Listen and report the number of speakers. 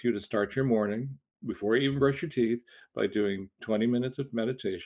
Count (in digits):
1